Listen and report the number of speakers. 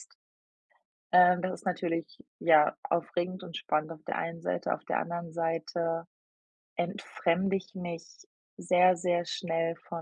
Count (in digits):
1